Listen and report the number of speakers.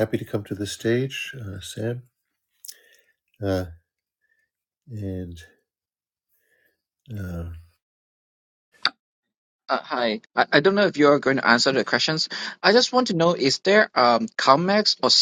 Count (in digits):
2